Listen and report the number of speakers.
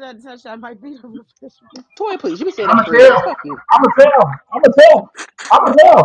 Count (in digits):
3